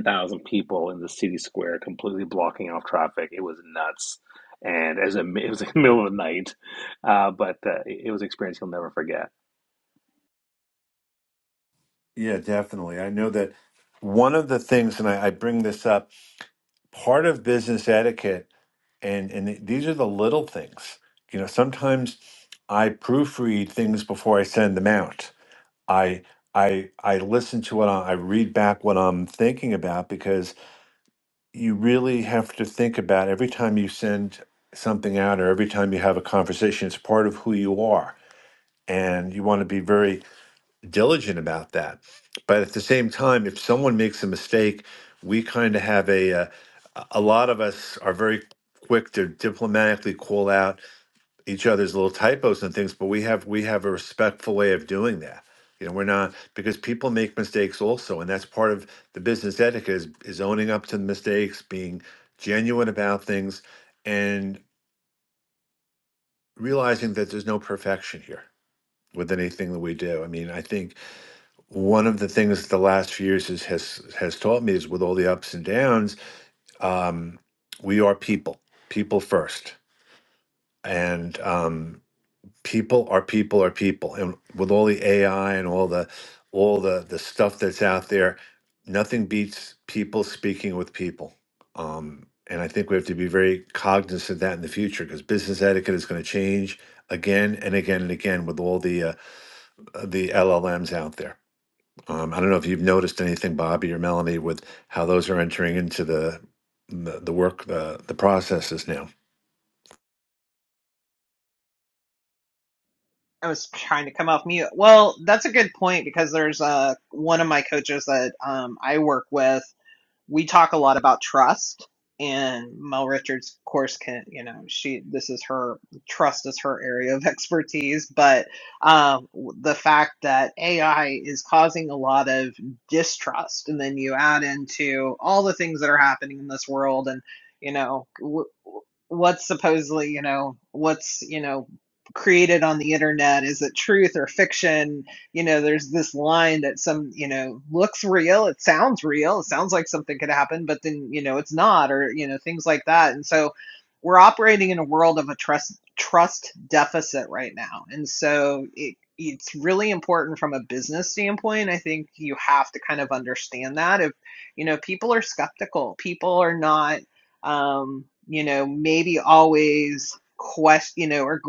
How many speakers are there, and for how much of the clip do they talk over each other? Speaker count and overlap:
three, no overlap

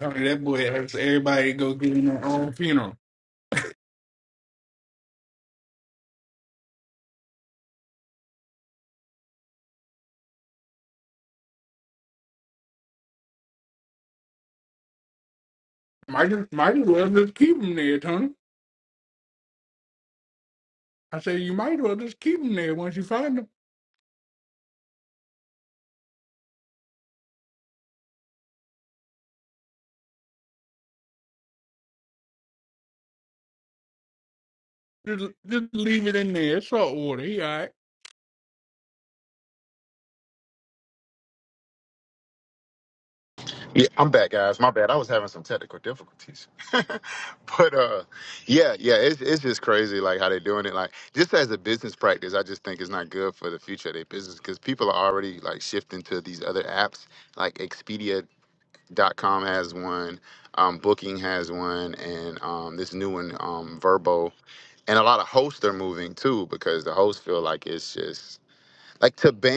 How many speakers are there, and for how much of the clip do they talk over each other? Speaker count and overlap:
two, no overlap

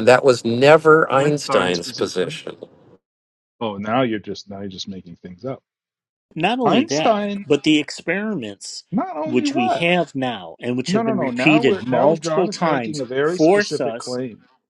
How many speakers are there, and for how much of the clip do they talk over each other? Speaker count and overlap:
three, about 37%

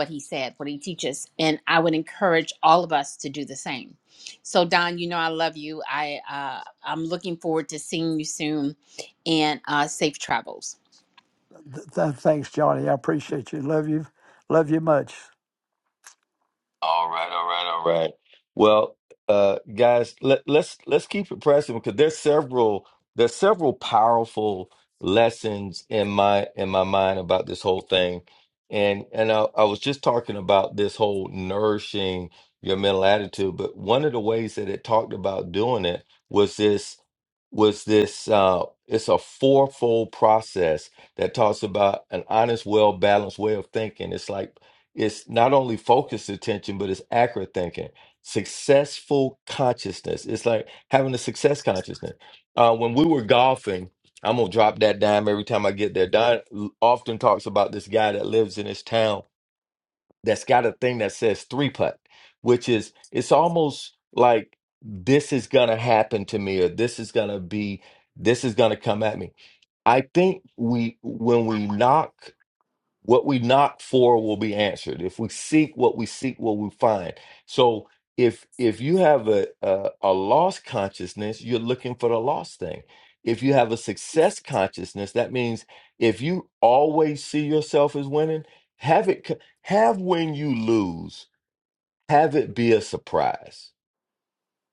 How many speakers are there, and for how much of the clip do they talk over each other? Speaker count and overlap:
three, no overlap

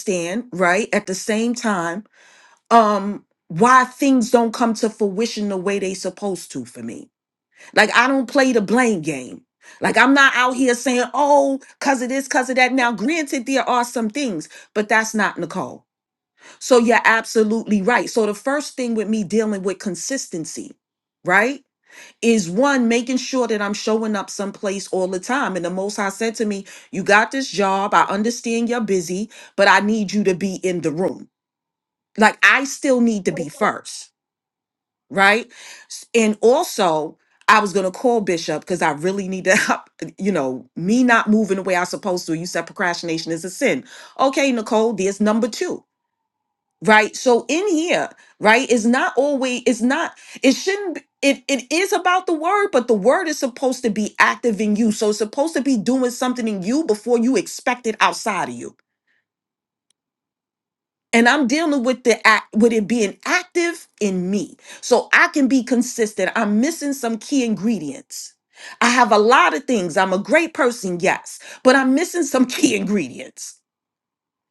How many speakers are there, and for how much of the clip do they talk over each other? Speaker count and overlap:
one, no overlap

